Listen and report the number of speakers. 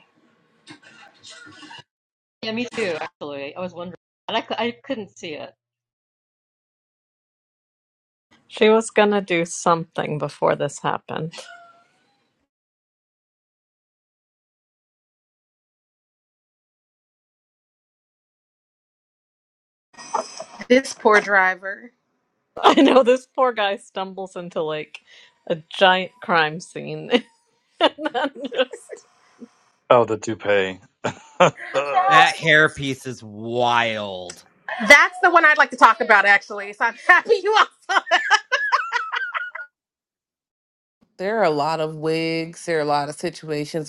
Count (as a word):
six